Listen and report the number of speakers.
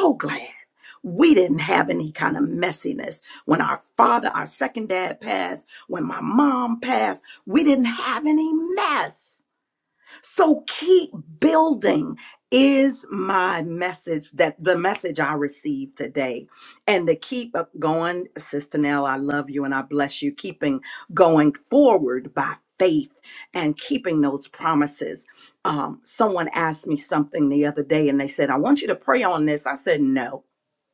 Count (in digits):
1